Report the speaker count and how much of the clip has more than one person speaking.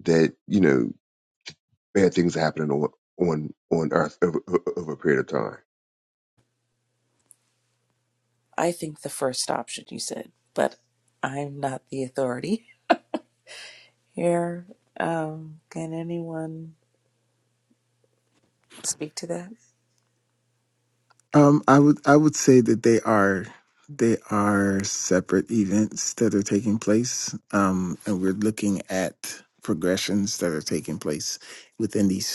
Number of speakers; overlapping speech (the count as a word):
three, no overlap